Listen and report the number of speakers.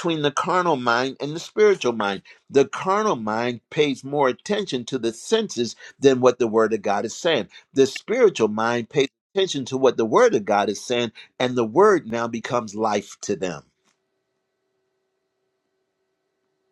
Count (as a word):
one